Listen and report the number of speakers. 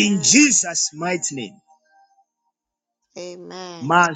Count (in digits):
2